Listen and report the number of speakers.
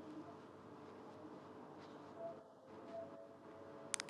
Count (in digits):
0